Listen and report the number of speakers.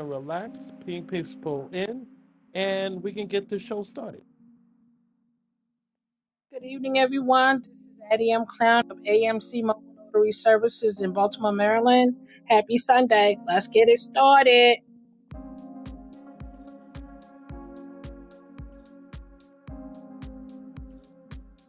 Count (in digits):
2